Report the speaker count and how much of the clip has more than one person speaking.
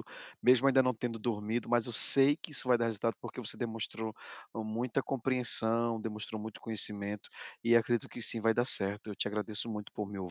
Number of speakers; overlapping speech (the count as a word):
one, no overlap